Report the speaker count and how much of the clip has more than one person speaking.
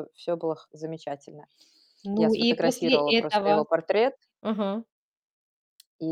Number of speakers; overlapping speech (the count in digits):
2, about 24%